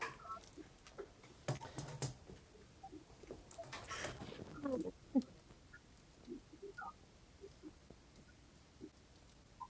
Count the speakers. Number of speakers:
0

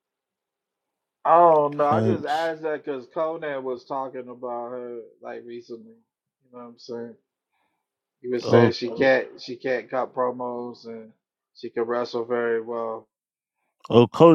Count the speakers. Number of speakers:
2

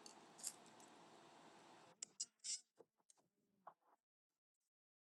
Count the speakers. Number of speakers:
0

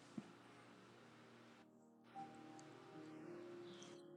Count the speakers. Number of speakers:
0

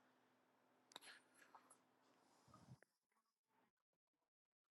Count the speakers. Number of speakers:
0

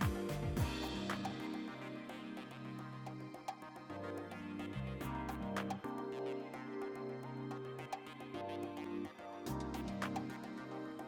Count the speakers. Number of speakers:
0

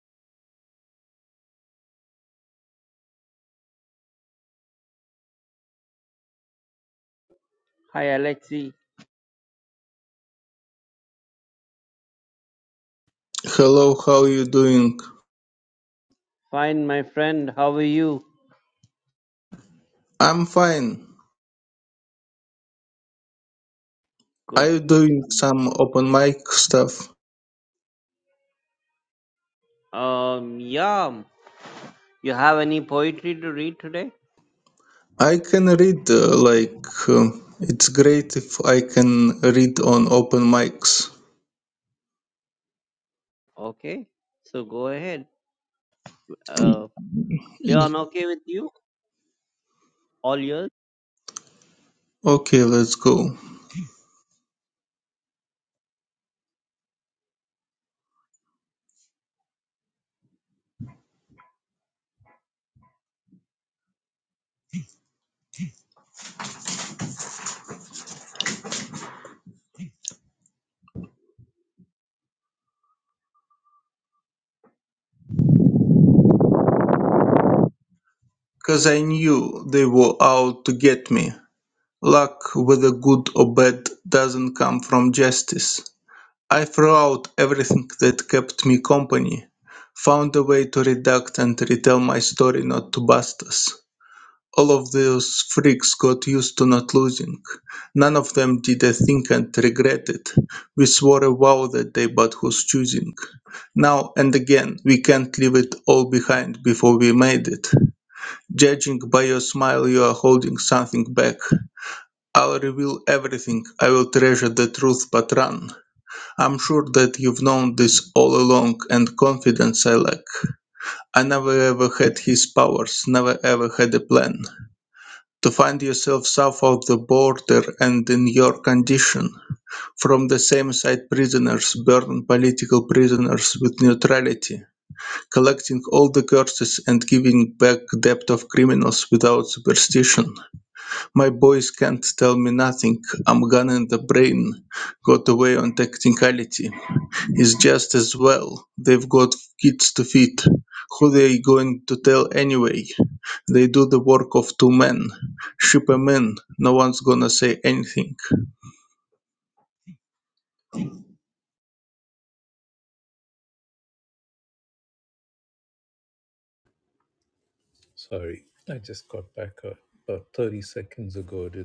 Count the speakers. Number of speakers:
3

